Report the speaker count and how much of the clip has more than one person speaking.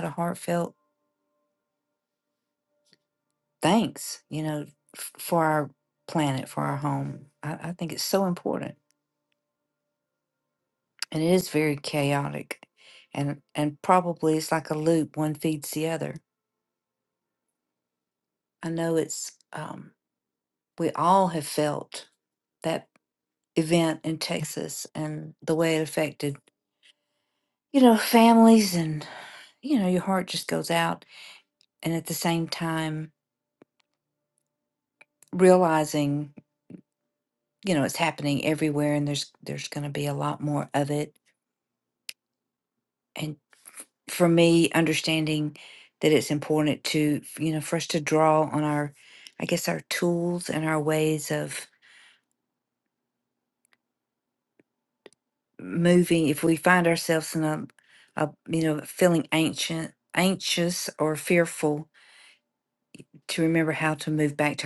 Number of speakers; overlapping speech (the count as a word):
one, no overlap